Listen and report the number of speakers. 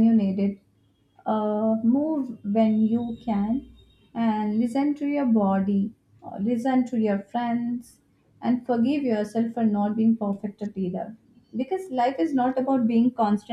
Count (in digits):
1